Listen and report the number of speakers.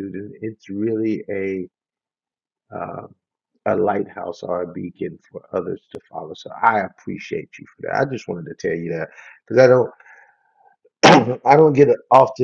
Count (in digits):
1